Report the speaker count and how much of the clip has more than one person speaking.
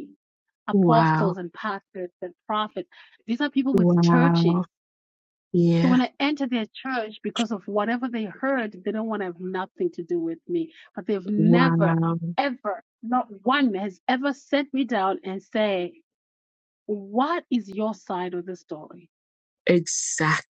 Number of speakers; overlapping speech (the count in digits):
2, about 11%